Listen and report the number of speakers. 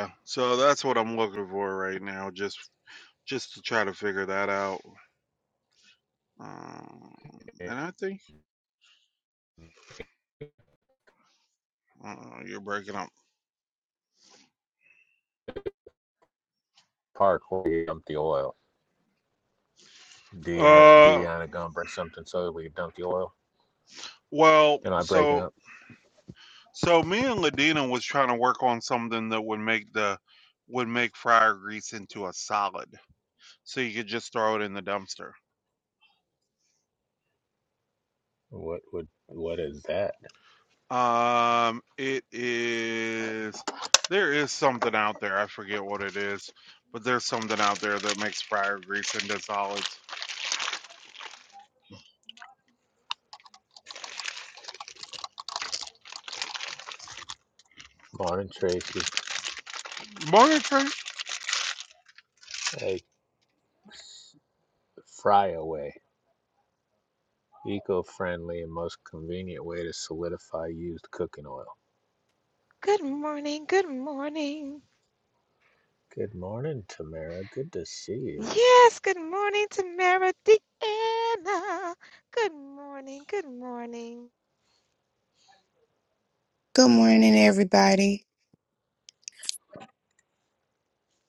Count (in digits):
4